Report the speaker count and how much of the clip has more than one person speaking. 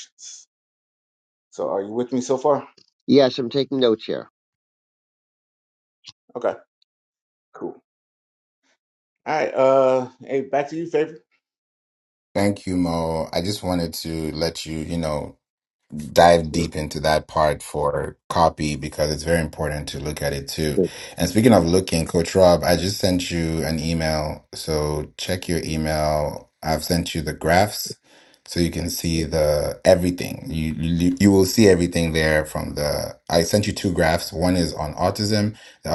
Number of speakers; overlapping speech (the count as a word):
three, under 1%